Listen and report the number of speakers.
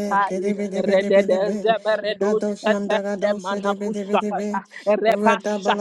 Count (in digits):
2